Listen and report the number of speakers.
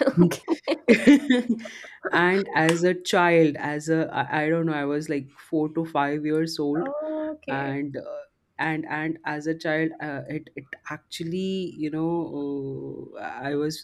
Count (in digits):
2